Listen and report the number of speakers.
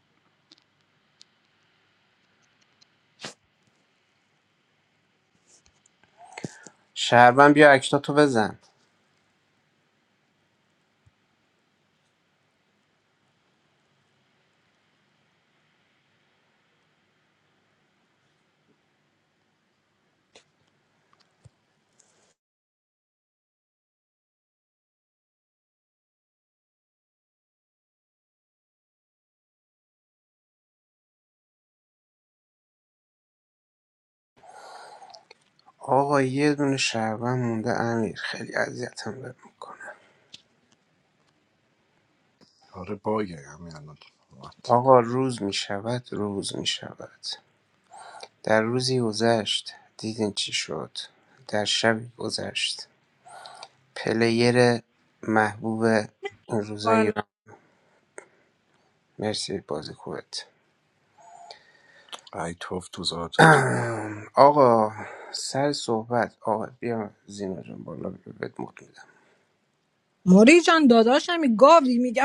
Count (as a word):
three